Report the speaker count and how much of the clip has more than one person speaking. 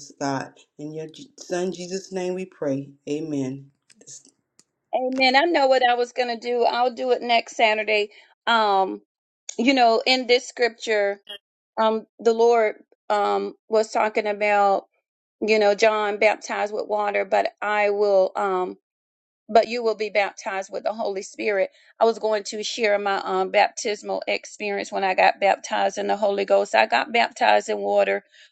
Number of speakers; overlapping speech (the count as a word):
two, no overlap